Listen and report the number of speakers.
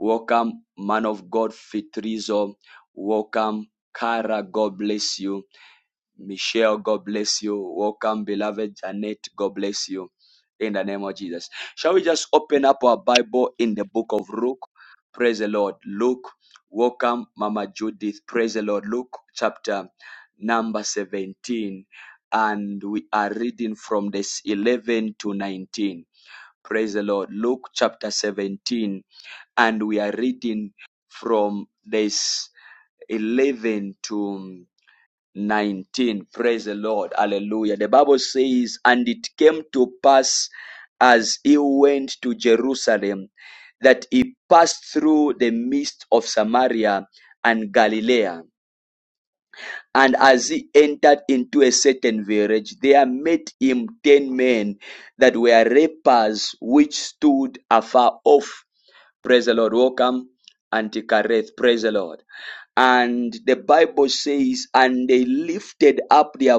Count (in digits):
1